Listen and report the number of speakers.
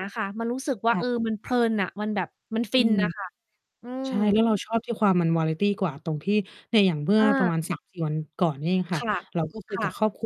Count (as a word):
two